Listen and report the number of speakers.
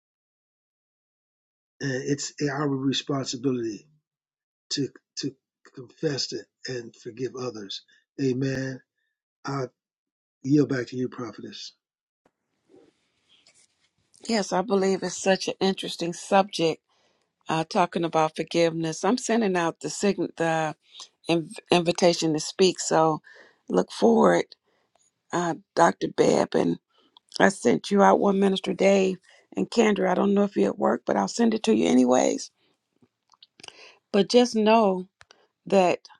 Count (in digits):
2